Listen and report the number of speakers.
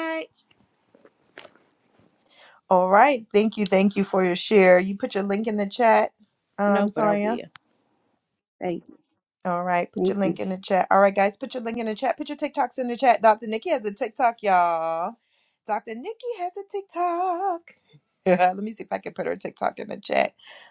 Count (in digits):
2